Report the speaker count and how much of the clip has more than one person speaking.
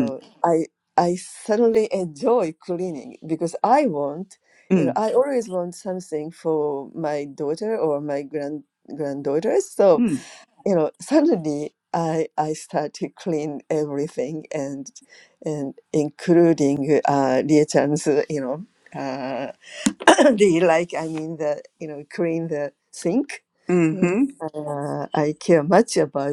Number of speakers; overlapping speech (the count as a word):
two, about 3%